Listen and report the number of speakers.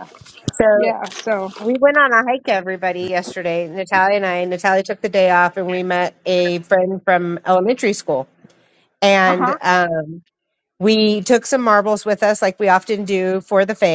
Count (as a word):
two